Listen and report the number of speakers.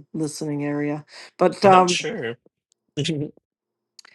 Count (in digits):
2